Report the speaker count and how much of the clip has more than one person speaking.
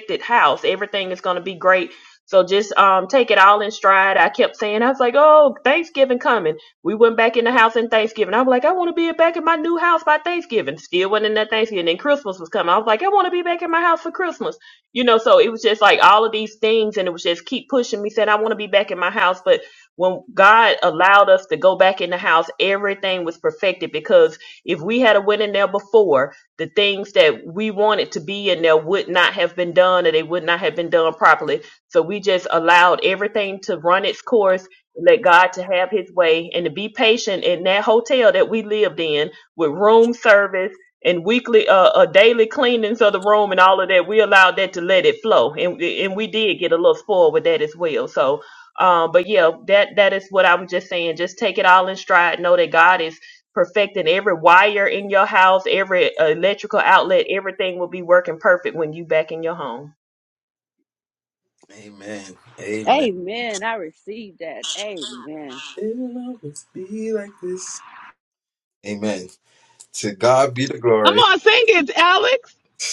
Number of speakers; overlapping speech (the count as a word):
four, about 1%